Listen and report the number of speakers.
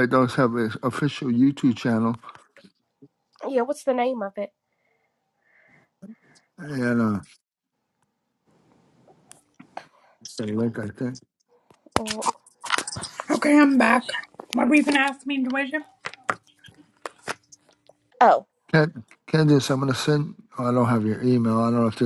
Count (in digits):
3